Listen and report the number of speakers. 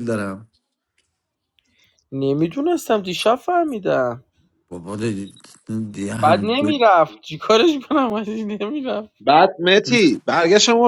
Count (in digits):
3